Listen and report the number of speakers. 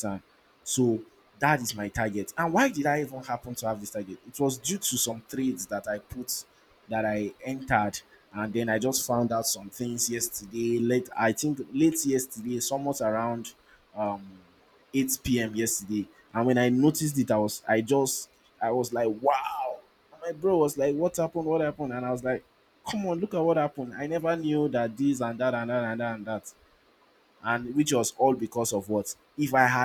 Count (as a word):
one